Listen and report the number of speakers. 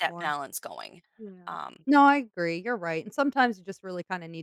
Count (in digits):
2